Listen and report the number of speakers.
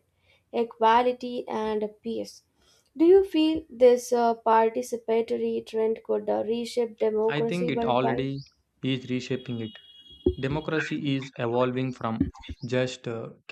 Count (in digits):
2